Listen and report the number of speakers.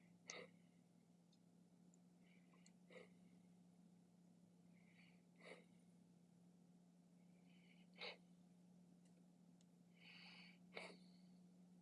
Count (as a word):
zero